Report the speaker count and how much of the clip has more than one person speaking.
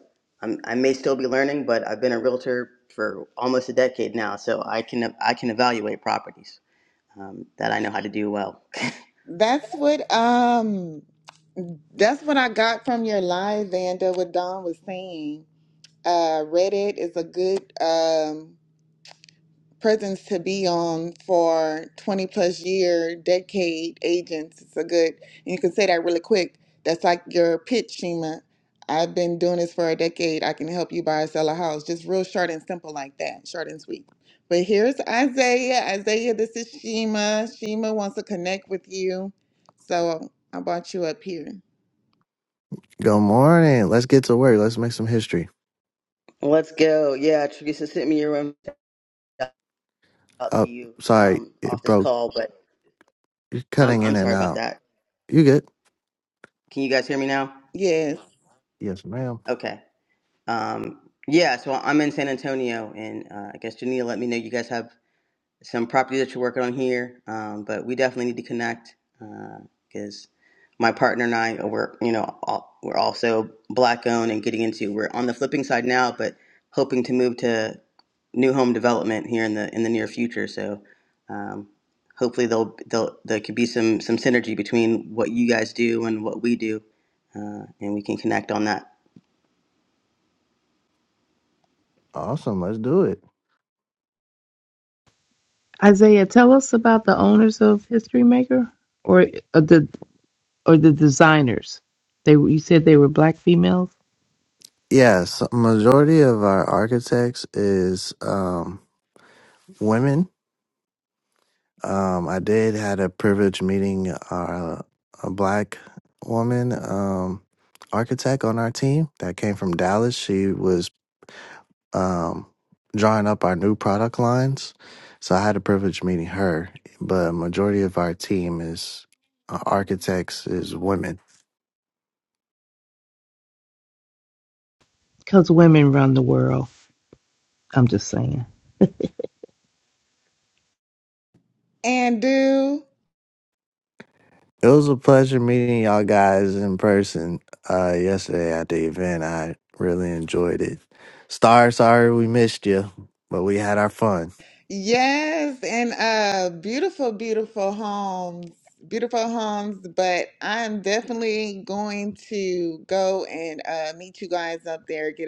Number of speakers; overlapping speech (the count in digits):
4, about 1%